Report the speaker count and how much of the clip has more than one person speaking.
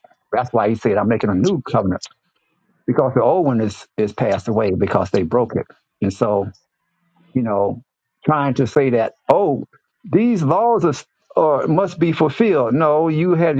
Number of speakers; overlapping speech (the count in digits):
1, no overlap